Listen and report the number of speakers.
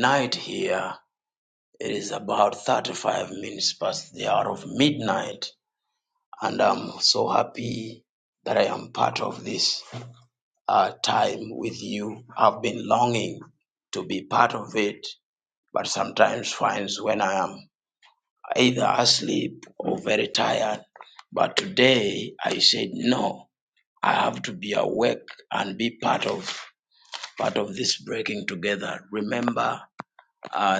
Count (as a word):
one